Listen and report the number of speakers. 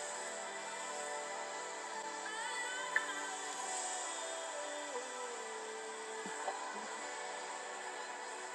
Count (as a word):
zero